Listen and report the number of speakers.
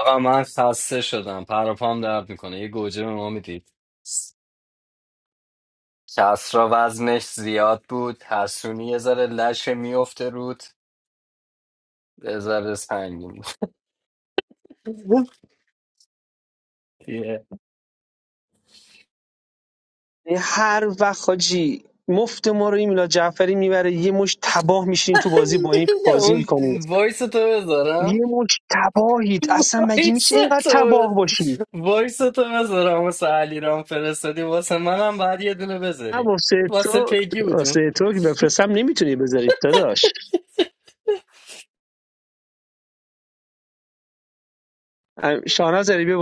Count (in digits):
2